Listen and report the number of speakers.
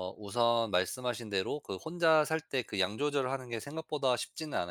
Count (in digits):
1